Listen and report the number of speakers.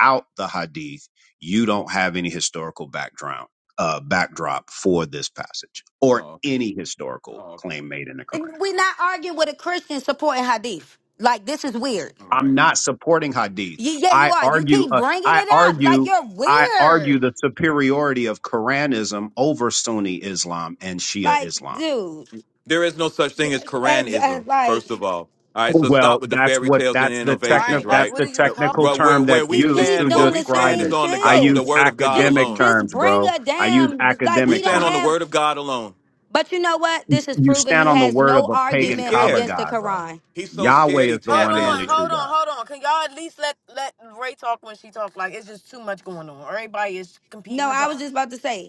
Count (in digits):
4